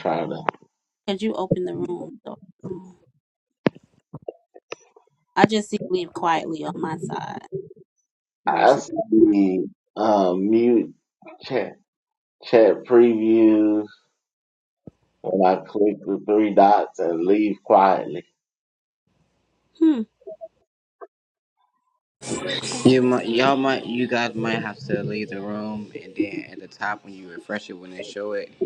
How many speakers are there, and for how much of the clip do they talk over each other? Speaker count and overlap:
three, about 3%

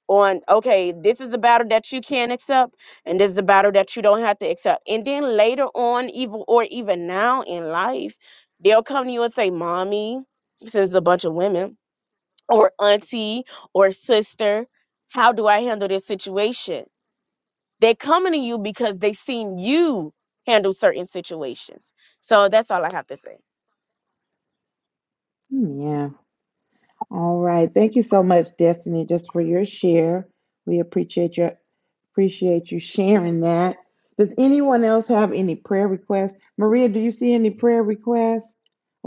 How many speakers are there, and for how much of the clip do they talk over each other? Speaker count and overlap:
two, no overlap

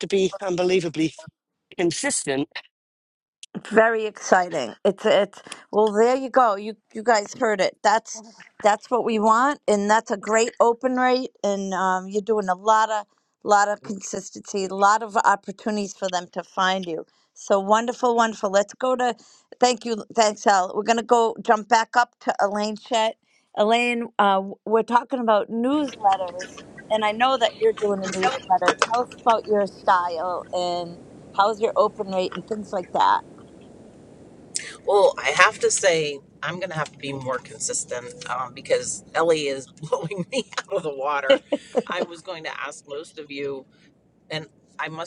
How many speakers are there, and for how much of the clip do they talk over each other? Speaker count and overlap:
three, no overlap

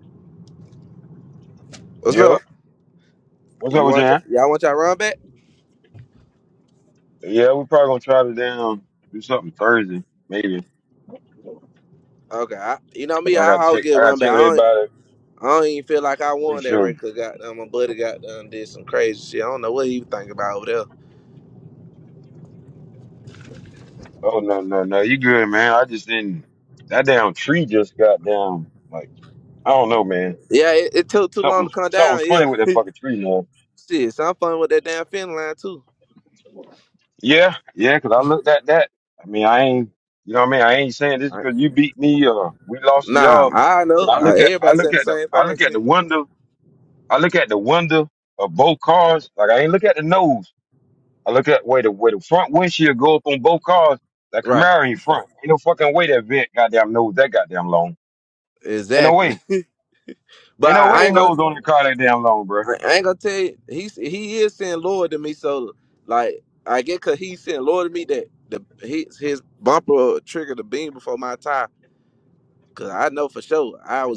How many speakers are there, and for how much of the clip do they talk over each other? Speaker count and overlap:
two, about 10%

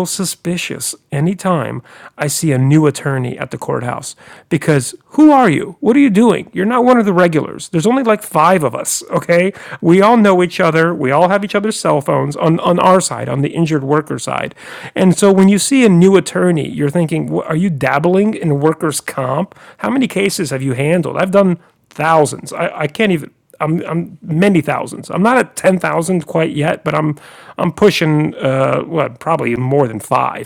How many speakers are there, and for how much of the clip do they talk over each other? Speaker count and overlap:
one, no overlap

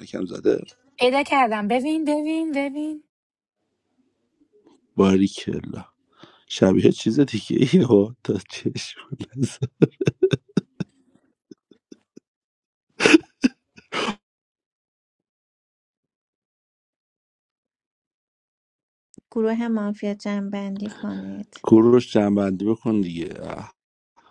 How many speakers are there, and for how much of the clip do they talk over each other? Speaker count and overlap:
three, no overlap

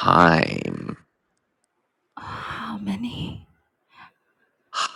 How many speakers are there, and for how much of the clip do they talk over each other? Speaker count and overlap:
two, no overlap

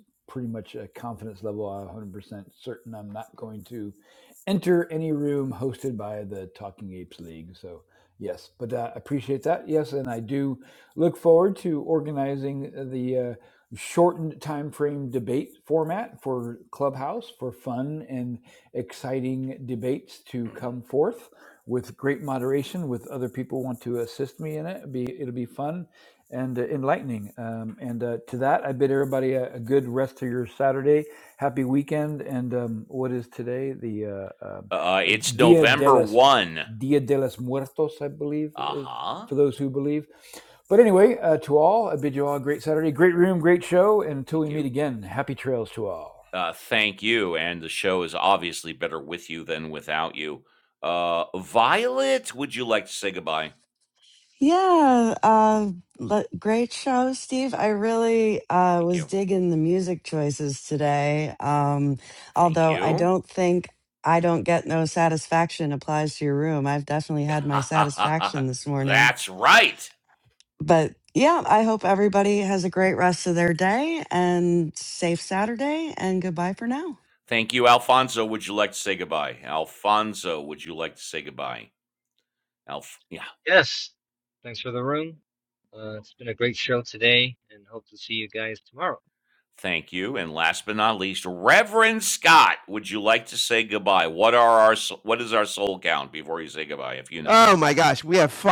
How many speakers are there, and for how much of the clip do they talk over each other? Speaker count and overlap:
five, about 4%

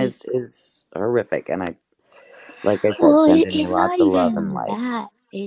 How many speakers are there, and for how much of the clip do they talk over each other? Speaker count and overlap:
two, about 35%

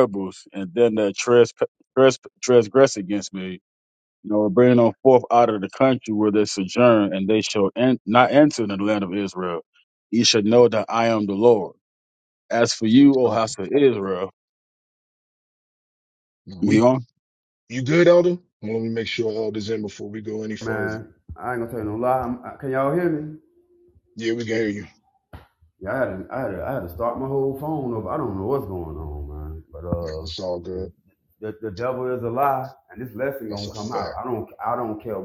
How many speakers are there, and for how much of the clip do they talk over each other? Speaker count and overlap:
three, about 5%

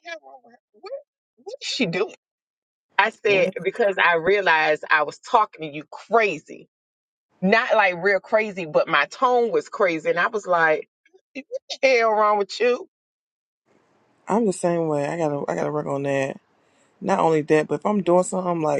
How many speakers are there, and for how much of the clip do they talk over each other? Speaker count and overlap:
two, about 1%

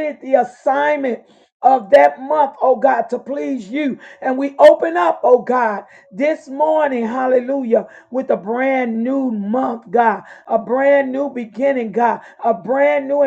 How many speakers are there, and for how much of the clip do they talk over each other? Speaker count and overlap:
one, no overlap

